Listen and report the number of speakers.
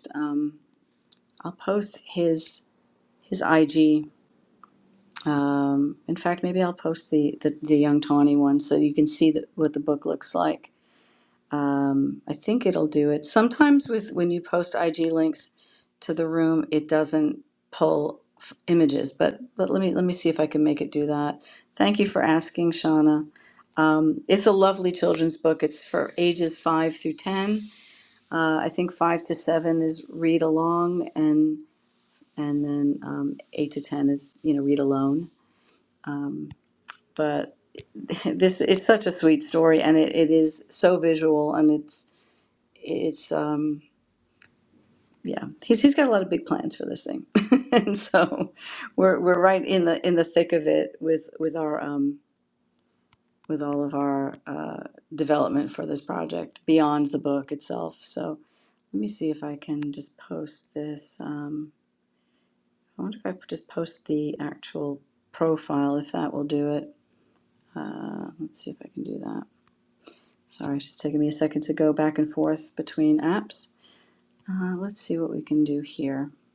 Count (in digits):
1